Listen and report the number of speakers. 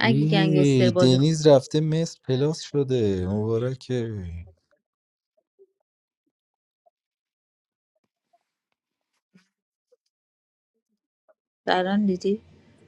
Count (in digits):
2